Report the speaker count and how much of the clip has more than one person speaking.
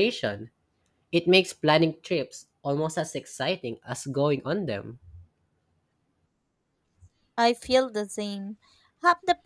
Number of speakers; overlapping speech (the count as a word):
two, no overlap